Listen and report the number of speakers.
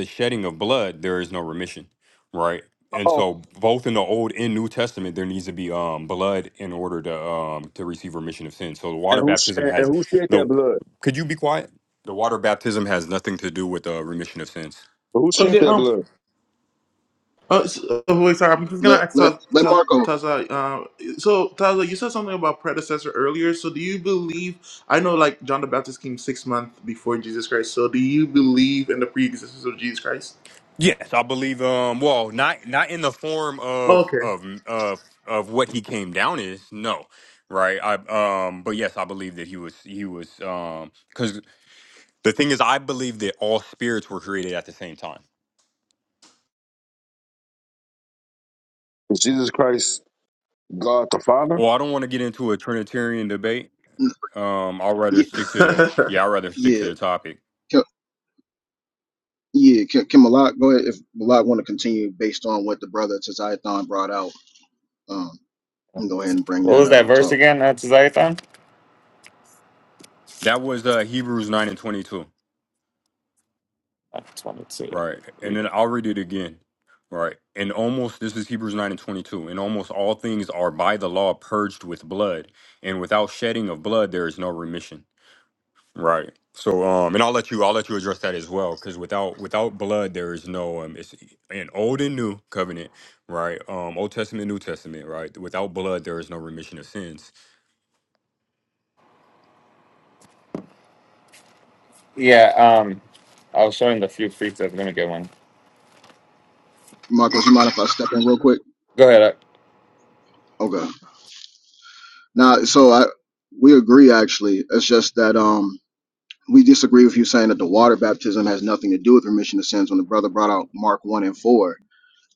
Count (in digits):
5